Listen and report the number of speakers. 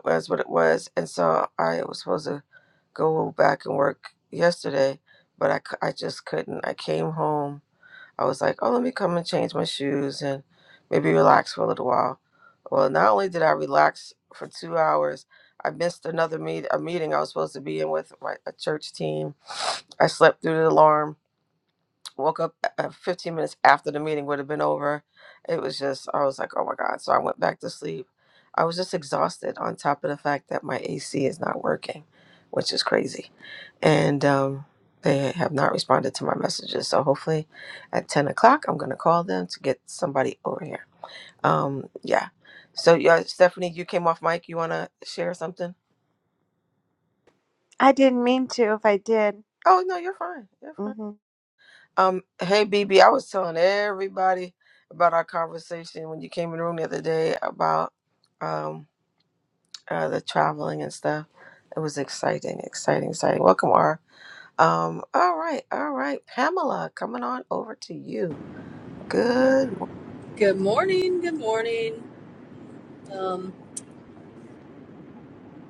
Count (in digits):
3